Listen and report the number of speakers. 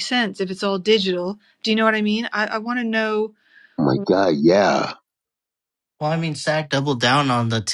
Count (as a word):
three